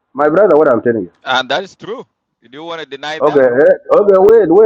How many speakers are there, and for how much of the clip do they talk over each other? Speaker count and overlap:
2, about 5%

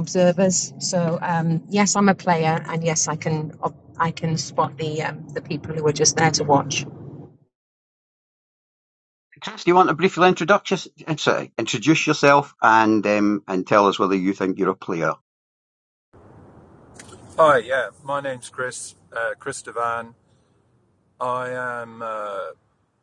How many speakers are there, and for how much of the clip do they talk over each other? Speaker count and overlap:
3, no overlap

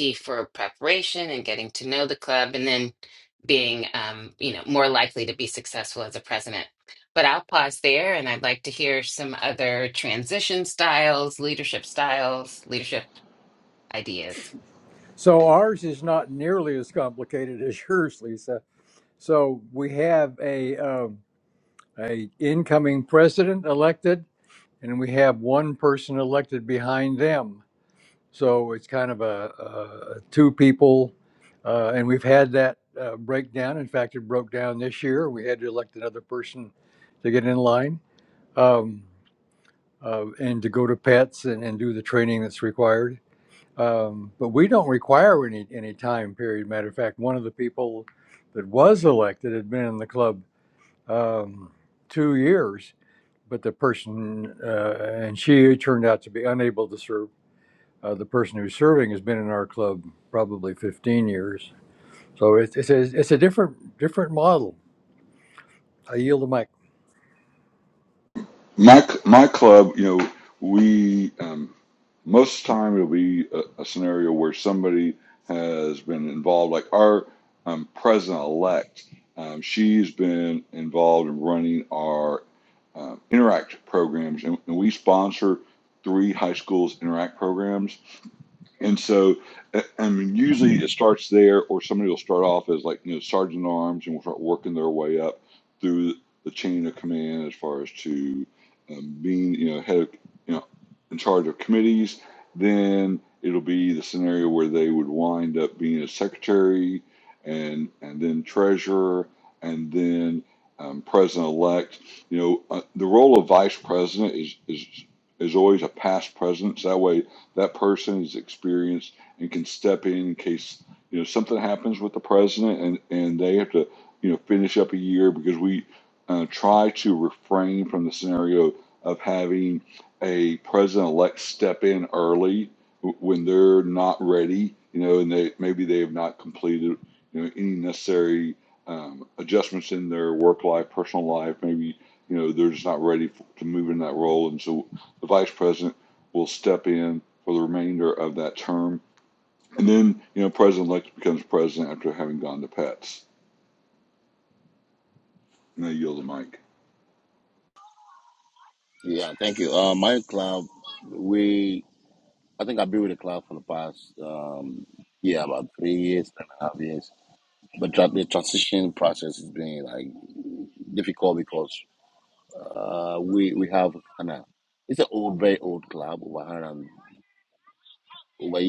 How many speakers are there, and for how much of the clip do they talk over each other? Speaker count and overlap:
4, no overlap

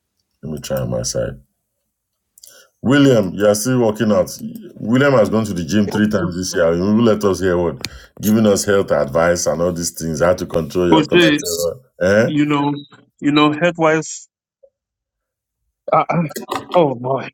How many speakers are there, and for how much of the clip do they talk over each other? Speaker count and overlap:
2, about 3%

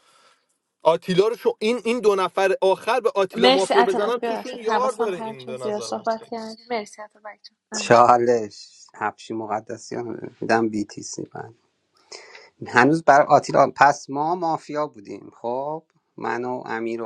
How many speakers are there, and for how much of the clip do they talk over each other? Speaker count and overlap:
3, about 17%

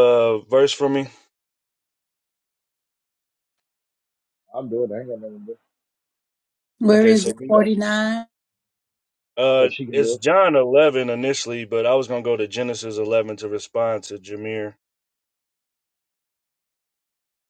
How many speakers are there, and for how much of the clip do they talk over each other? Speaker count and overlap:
3, about 8%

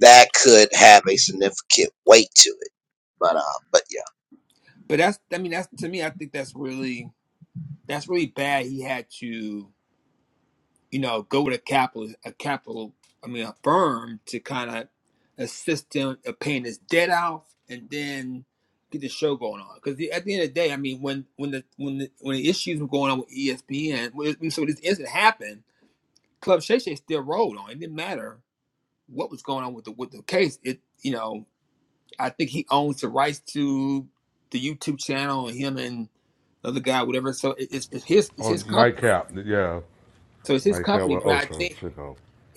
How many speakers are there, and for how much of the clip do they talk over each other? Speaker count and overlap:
3, about 4%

